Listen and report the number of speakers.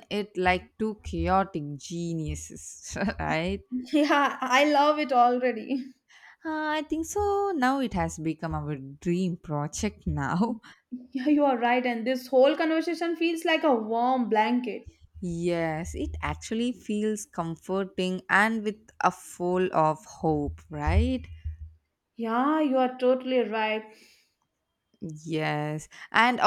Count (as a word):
two